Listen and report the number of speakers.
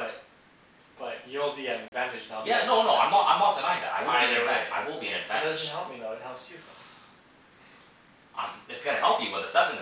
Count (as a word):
two